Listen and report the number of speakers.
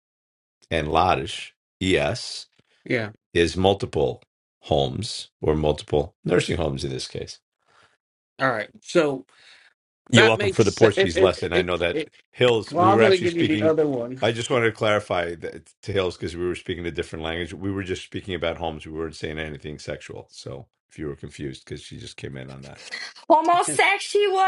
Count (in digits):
3